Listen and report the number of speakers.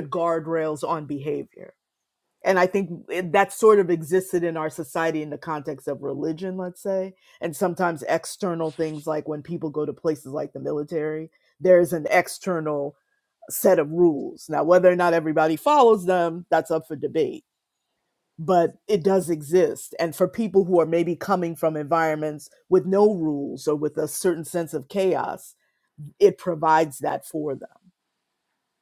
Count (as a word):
one